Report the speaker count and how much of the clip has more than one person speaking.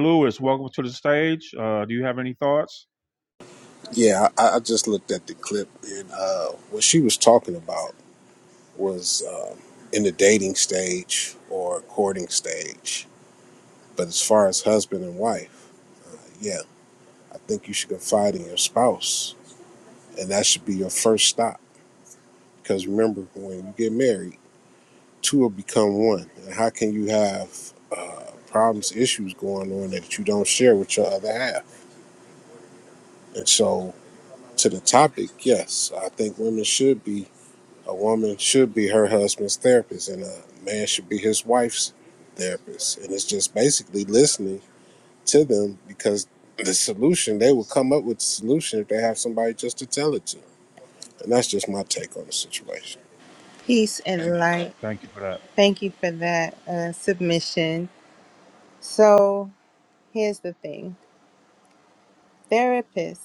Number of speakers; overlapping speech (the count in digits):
3, no overlap